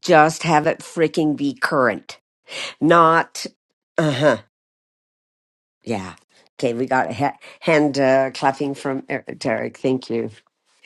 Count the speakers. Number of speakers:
1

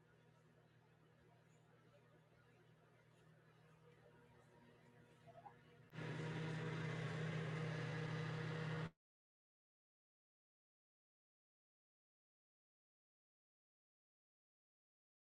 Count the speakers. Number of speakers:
0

